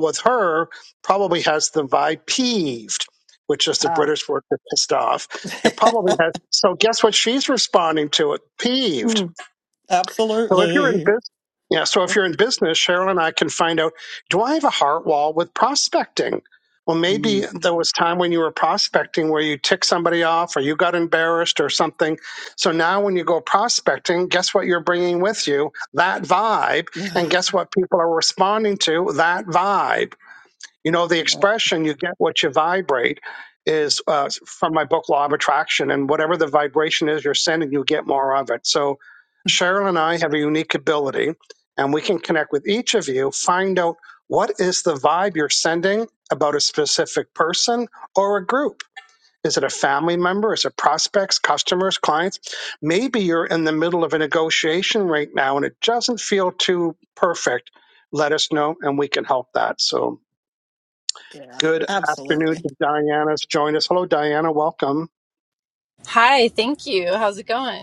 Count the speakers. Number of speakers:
3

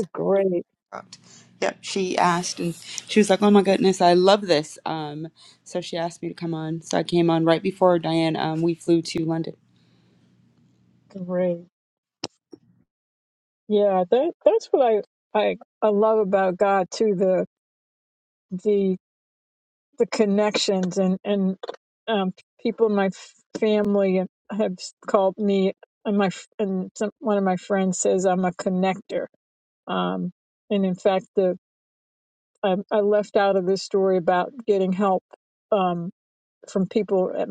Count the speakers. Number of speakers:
2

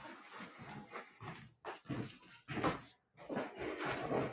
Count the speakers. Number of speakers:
0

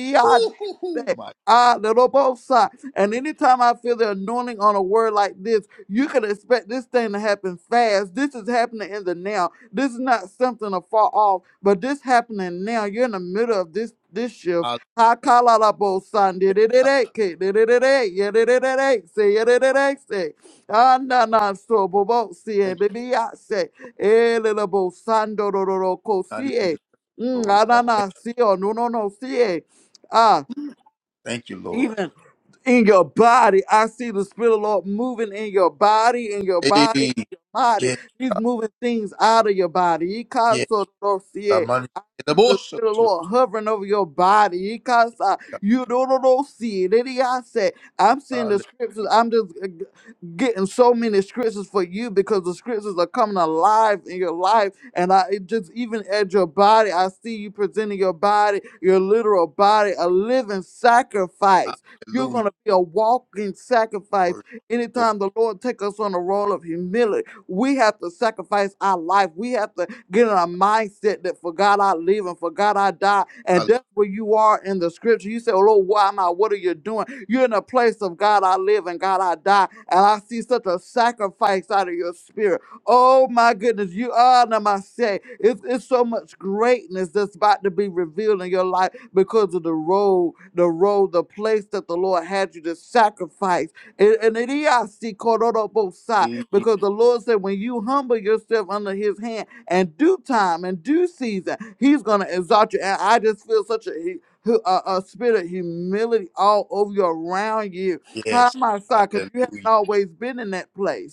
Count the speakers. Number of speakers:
2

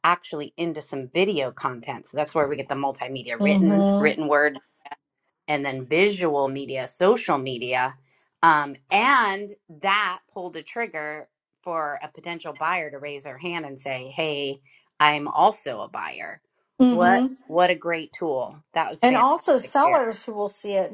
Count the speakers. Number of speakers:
2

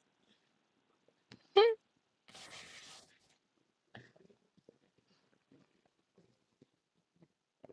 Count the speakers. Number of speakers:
0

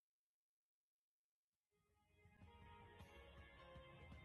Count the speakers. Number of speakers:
0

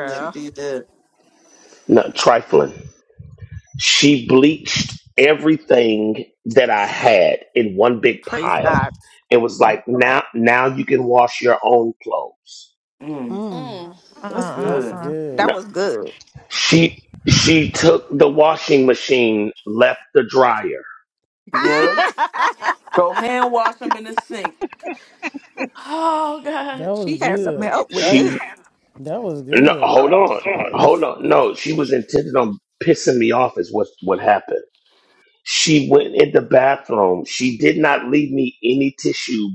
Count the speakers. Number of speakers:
5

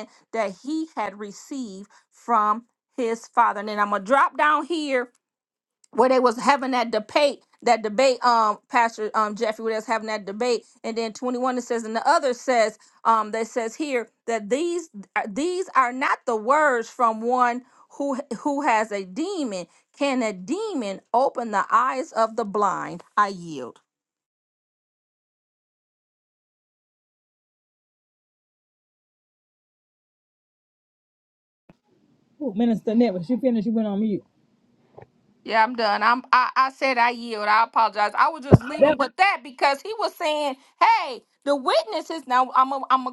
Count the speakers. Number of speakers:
2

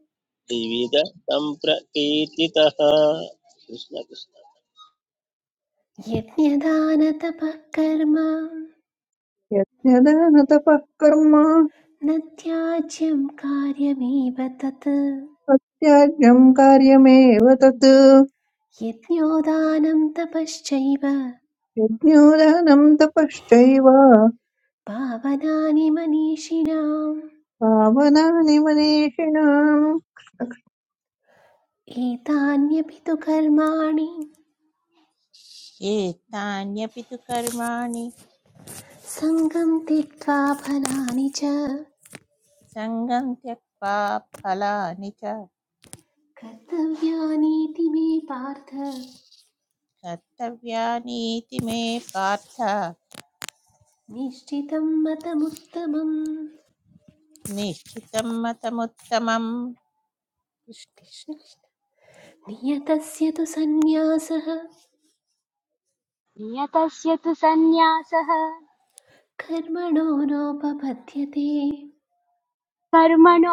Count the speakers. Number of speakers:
5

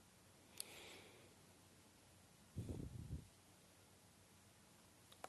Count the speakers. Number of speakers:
0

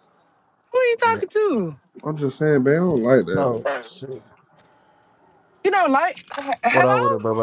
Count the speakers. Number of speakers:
3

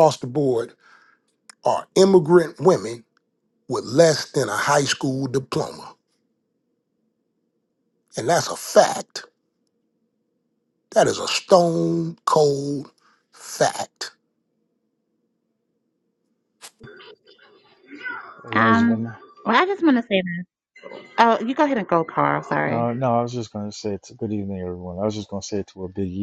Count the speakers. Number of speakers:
3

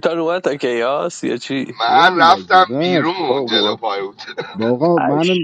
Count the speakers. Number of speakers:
3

